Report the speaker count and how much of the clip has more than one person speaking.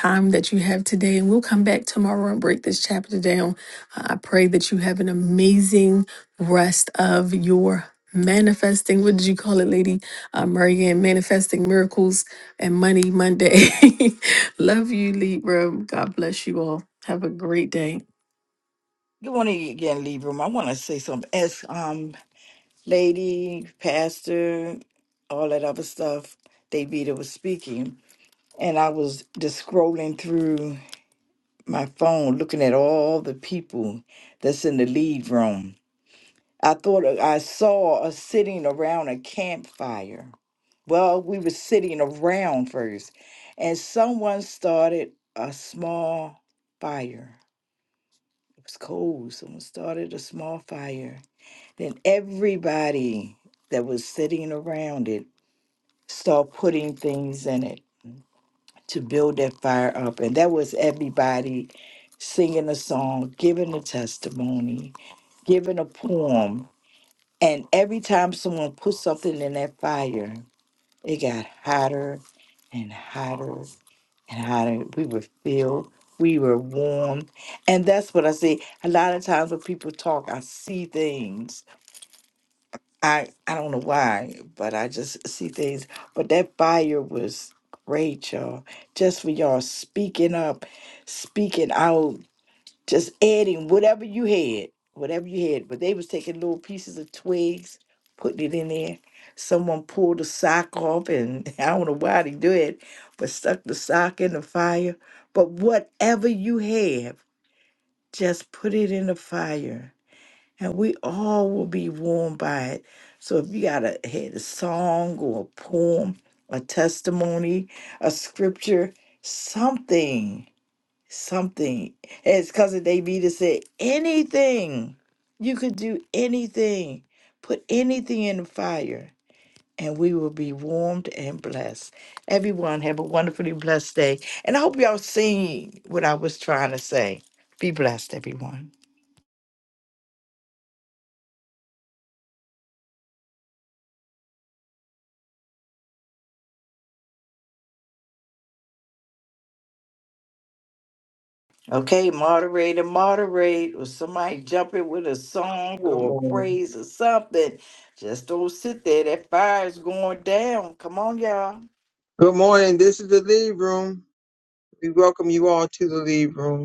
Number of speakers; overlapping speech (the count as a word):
three, under 1%